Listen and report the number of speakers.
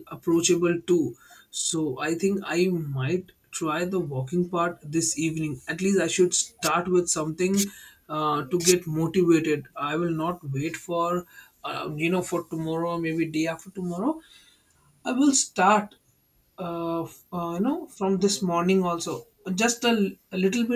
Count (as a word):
one